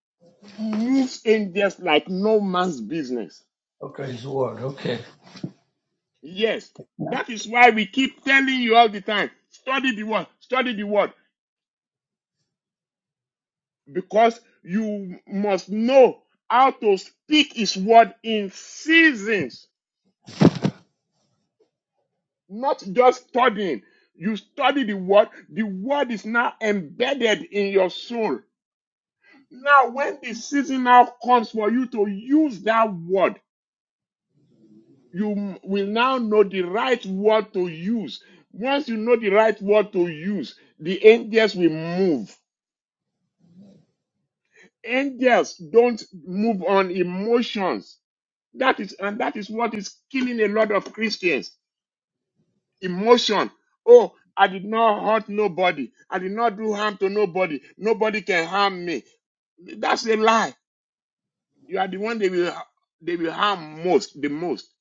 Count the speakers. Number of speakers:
2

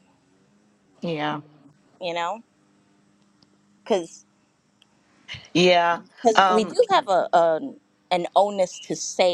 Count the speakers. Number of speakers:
2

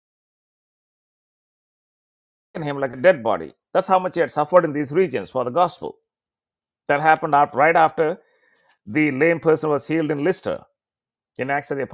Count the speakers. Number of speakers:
1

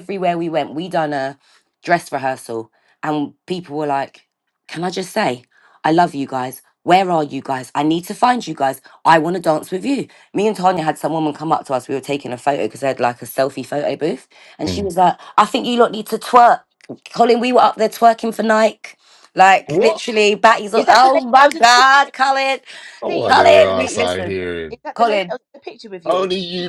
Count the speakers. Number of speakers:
3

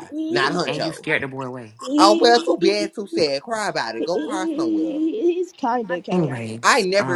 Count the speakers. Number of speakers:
3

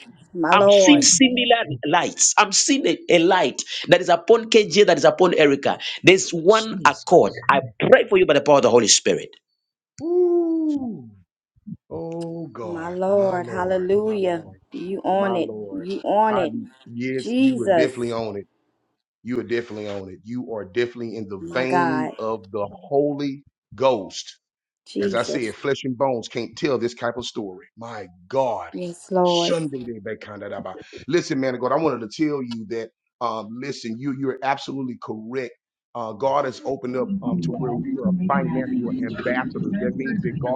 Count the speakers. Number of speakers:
3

